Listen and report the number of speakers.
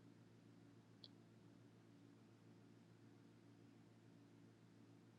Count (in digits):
0